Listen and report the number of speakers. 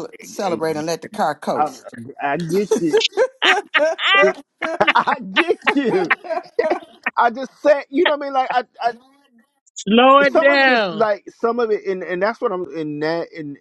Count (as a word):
three